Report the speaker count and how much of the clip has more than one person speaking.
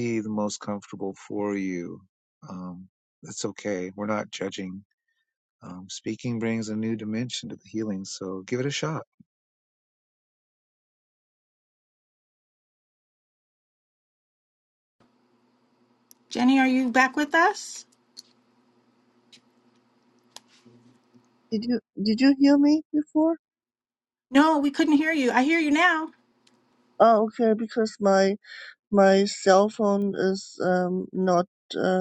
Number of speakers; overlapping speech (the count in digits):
3, no overlap